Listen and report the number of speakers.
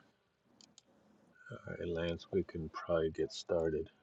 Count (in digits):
1